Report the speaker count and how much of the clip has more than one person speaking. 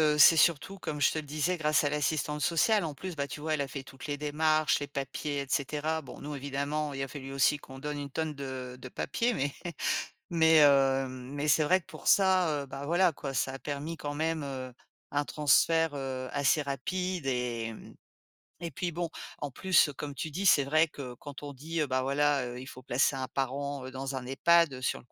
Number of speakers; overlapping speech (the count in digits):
1, no overlap